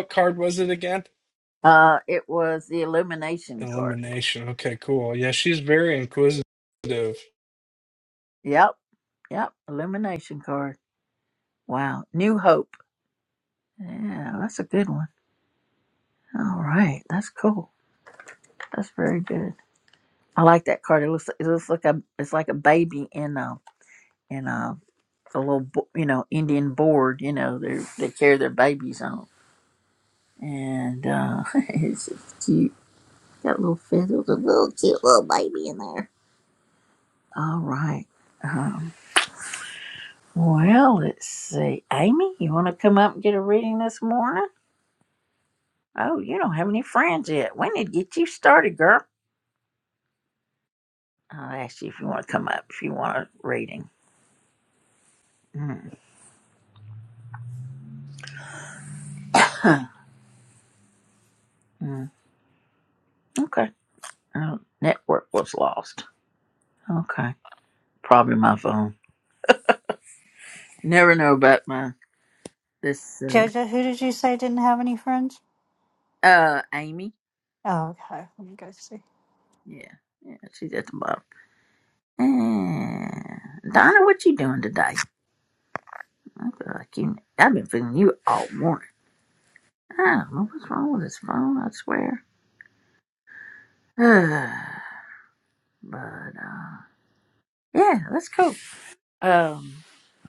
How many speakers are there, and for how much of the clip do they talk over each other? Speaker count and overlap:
three, about 1%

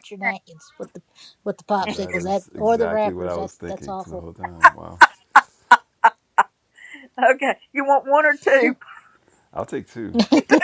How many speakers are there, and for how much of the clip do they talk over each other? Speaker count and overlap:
three, about 22%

